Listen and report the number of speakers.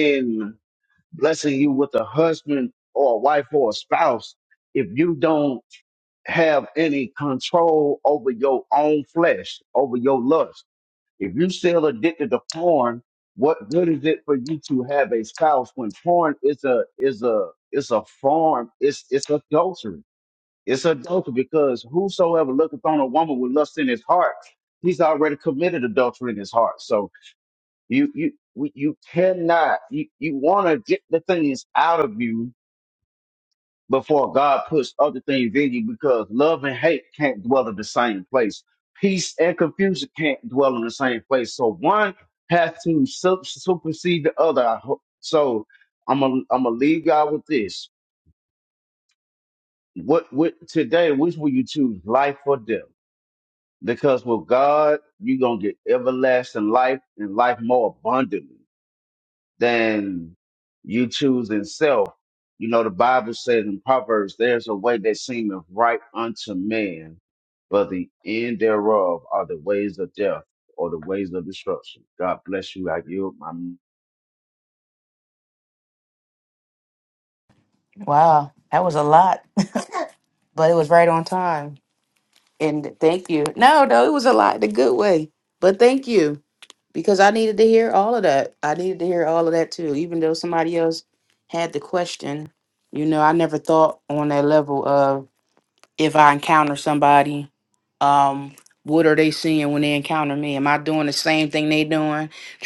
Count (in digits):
2